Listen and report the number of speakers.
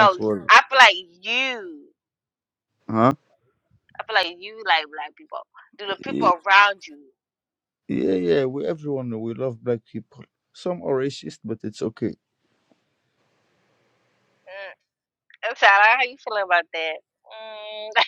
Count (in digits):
2